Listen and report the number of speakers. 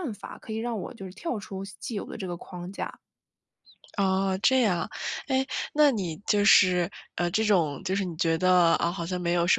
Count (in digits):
2